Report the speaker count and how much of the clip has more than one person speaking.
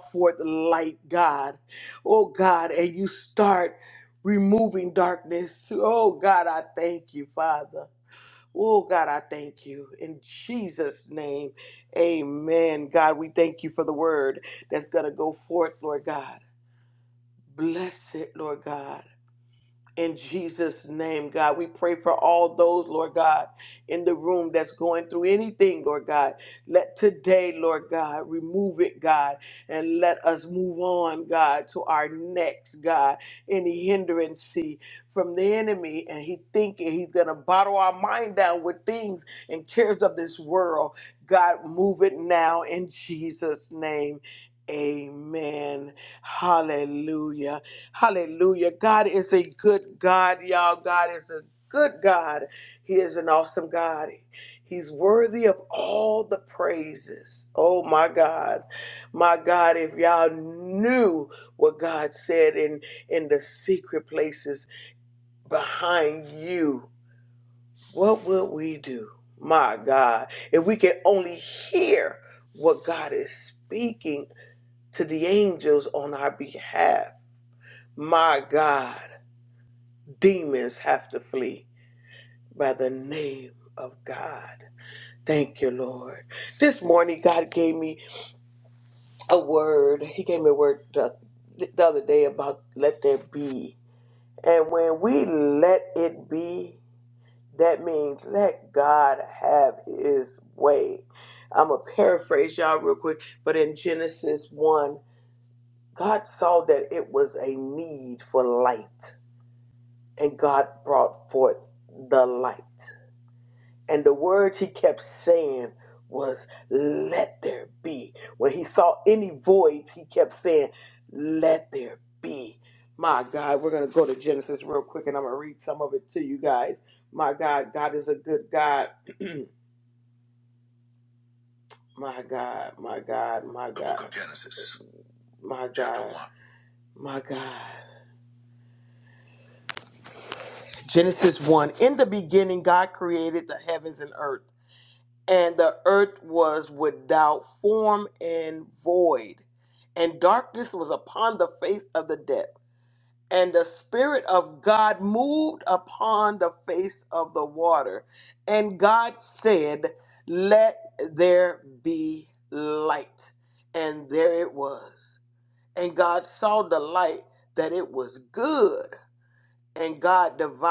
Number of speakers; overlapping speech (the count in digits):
1, no overlap